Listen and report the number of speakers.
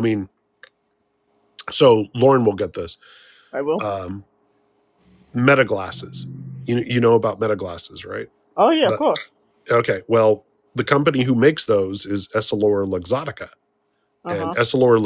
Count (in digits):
2